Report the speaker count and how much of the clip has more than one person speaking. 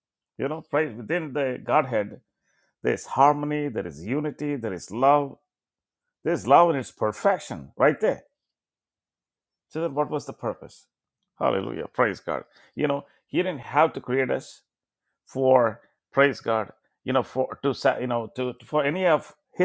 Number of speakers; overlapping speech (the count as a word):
one, no overlap